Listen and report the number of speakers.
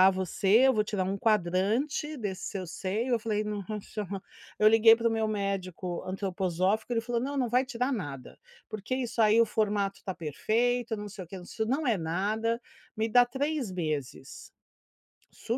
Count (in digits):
1